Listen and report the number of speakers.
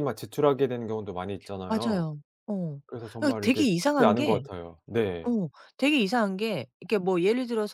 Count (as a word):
two